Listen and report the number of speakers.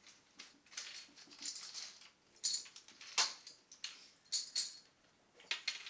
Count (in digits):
0